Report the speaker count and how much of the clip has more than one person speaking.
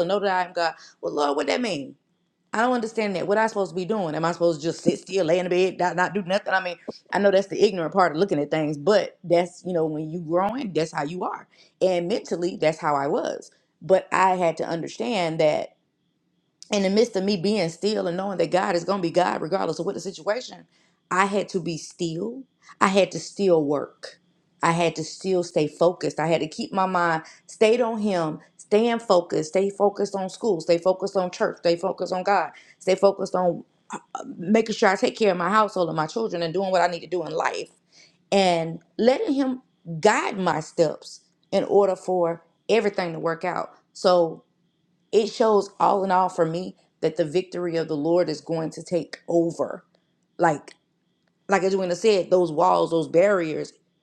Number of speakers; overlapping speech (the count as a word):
one, no overlap